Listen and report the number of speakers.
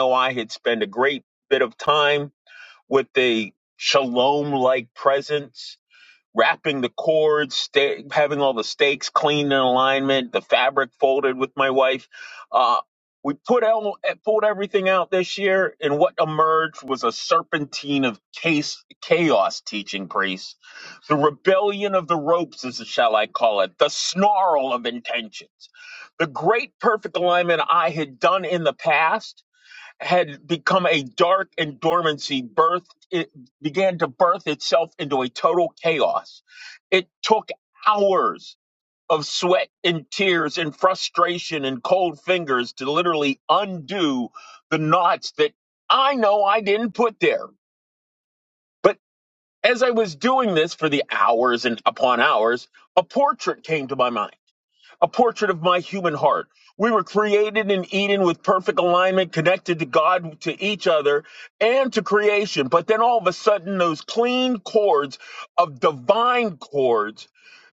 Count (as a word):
one